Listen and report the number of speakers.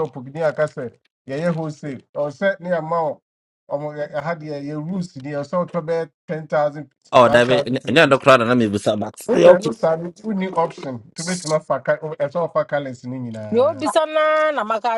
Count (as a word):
three